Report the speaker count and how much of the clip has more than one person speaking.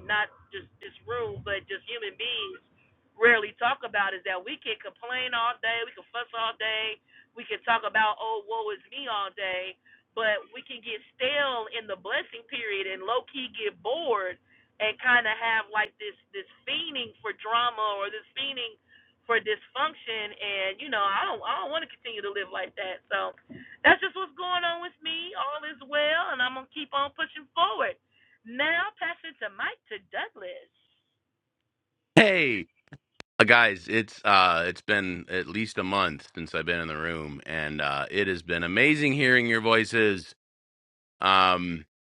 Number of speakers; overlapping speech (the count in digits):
2, no overlap